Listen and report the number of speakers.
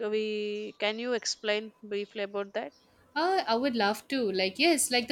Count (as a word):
two